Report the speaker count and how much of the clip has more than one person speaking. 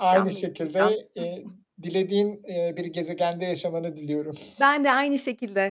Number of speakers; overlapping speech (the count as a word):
two, about 17%